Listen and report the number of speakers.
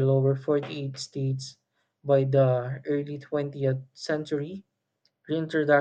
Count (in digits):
1